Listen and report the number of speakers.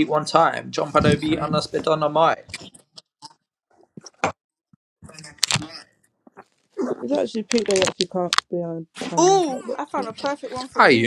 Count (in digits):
3